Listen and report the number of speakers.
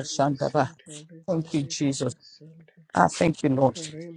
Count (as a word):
two